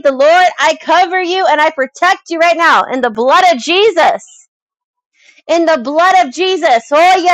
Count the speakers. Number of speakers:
one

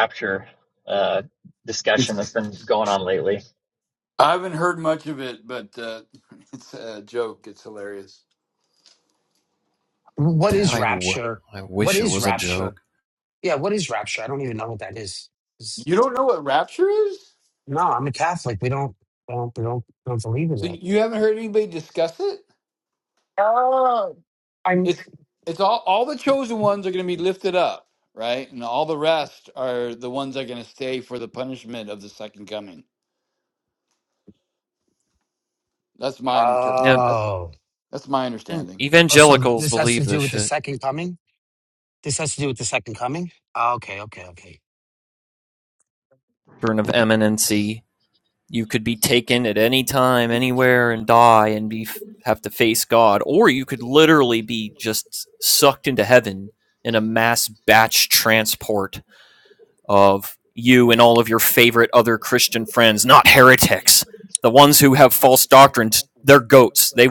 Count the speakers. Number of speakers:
four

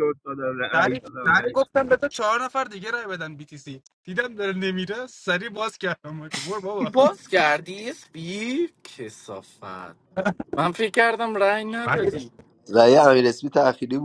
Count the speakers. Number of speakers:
four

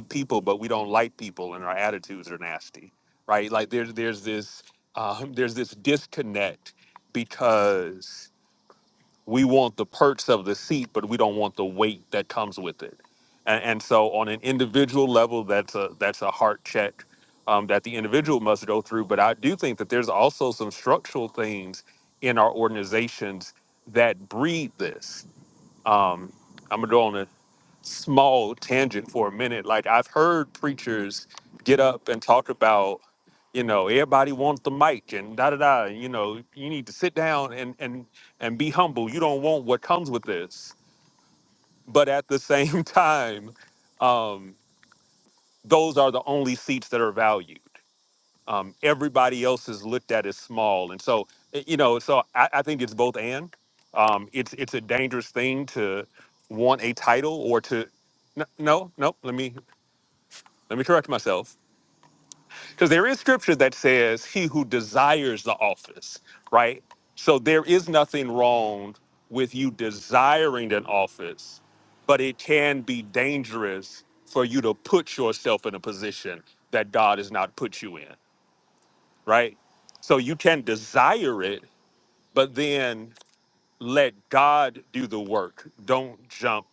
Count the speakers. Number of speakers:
one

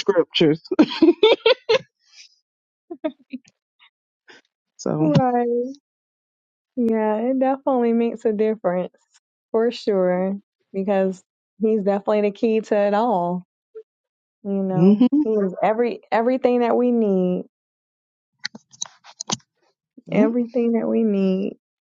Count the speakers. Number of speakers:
two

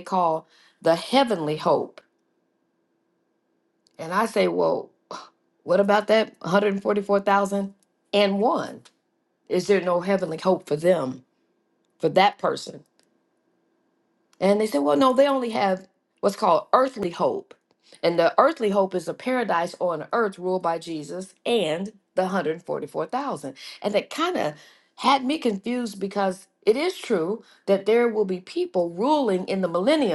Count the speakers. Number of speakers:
one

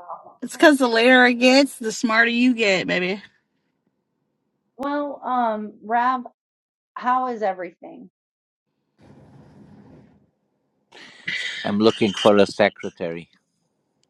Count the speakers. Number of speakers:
three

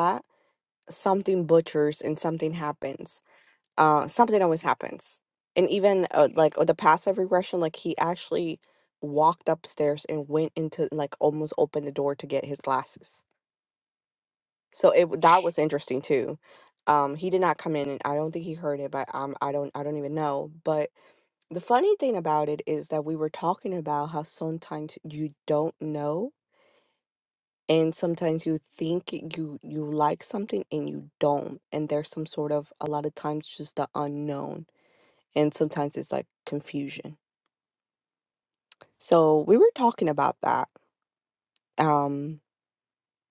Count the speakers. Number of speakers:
one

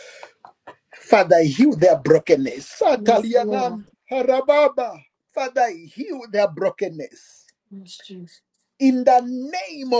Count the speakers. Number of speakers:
two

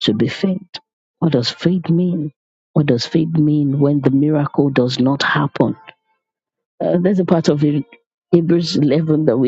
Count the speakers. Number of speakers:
one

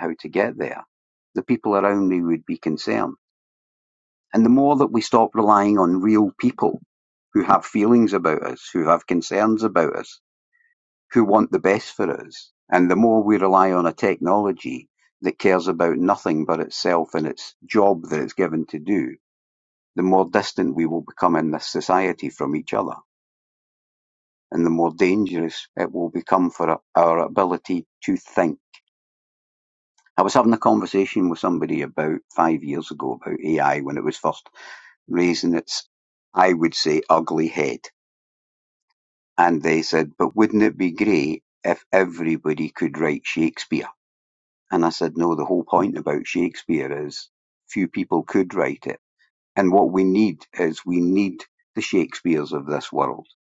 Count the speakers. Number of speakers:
one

